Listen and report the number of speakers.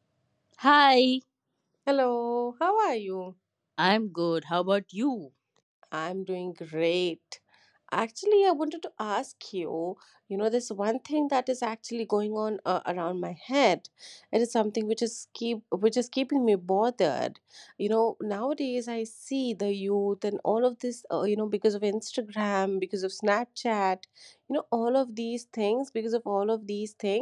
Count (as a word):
two